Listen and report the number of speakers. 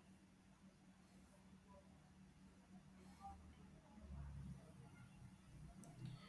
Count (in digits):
0